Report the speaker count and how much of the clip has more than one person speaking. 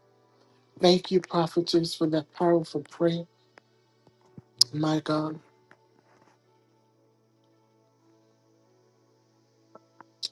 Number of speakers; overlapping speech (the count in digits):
1, no overlap